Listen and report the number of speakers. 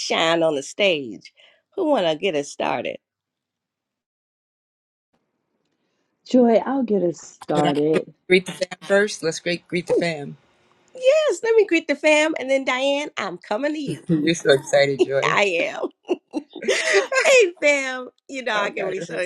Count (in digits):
3